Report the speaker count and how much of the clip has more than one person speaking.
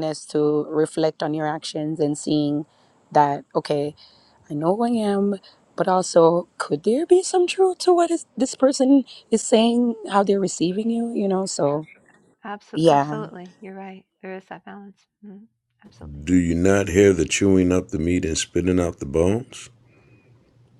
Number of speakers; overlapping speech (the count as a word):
three, about 2%